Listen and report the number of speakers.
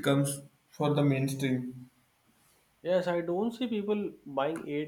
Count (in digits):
2